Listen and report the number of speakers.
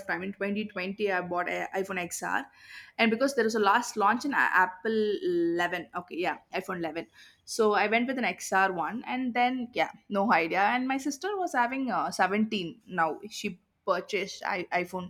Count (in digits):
1